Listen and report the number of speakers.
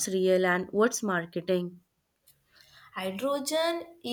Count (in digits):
2